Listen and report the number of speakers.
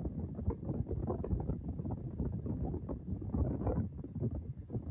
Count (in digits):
0